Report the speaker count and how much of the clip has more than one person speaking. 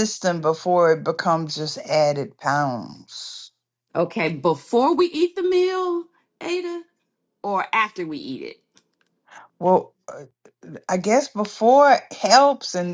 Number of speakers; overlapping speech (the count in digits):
2, no overlap